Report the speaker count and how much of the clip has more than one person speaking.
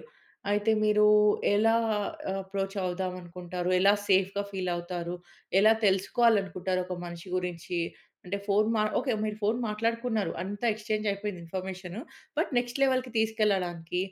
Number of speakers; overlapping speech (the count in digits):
1, no overlap